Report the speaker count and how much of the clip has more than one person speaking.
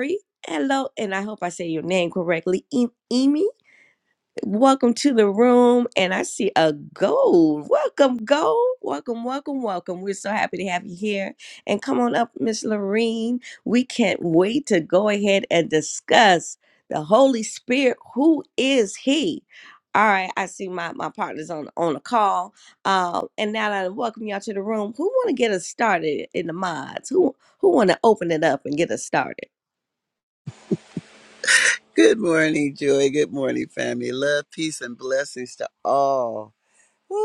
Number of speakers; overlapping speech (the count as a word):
two, no overlap